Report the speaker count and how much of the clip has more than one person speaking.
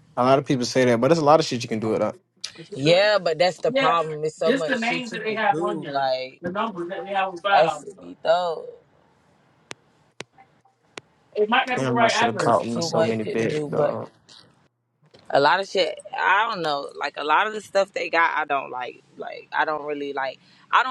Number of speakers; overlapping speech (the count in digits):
3, about 23%